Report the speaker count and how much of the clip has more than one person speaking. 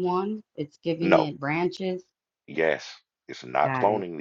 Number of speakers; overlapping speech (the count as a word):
two, about 16%